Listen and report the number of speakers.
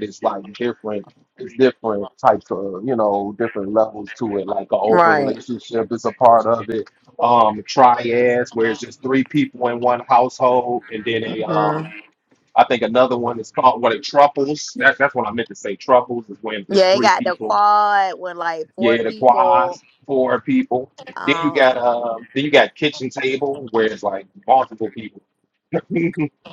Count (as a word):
two